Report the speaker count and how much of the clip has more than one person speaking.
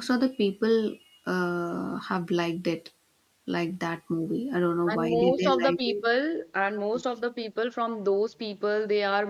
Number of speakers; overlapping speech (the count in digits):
2, about 13%